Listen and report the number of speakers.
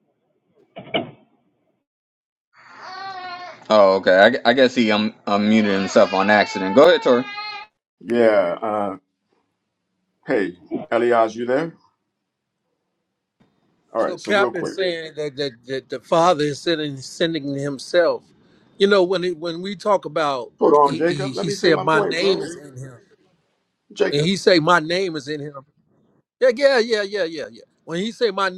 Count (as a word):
three